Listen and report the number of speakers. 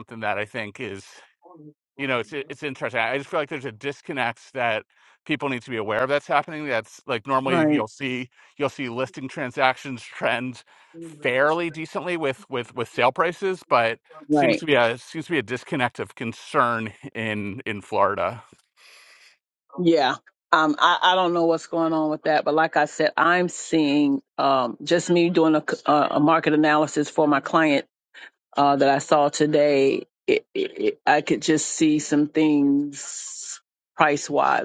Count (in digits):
2